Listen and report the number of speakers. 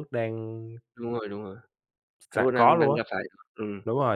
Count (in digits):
2